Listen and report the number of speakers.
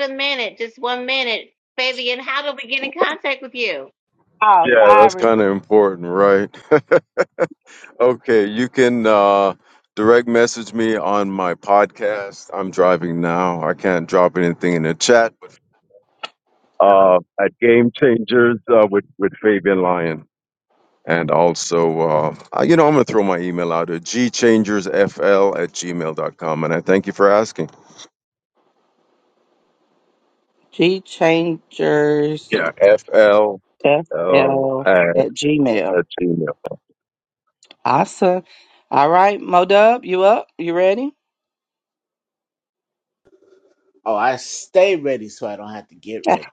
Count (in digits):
4